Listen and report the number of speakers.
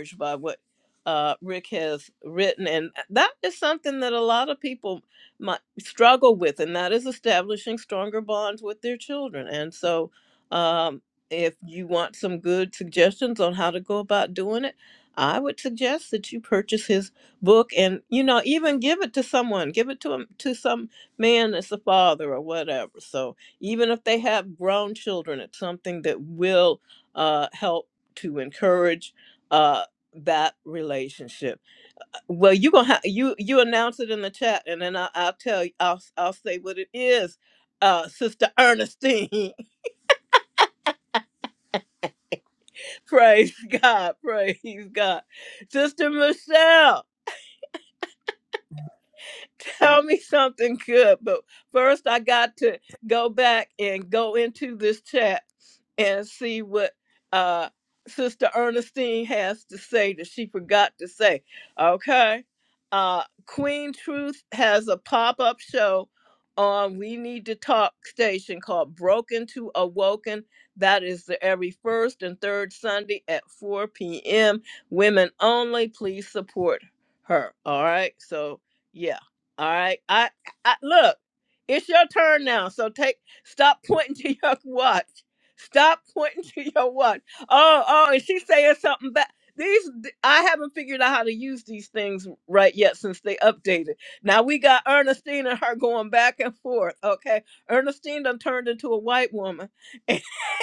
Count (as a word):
one